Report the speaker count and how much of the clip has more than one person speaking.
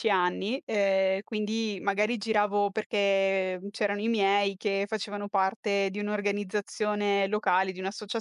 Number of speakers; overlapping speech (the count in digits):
1, no overlap